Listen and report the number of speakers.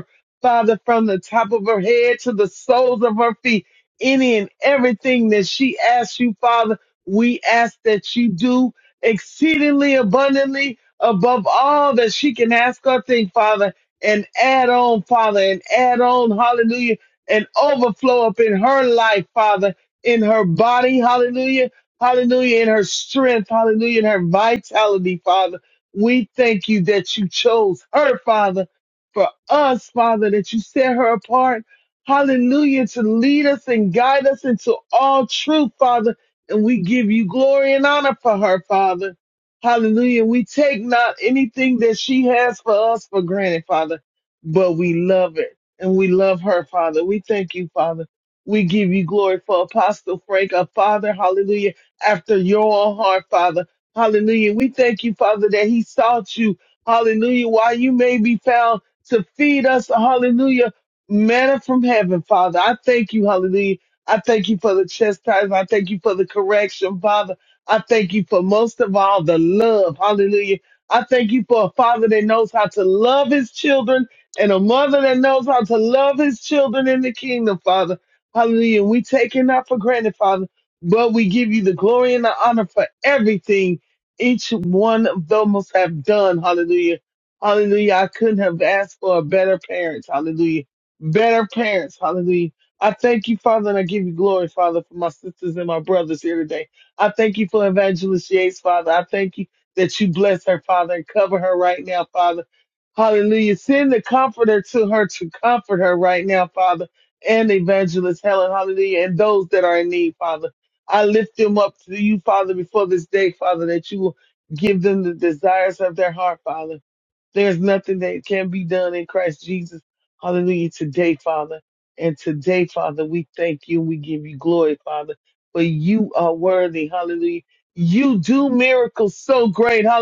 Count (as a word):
one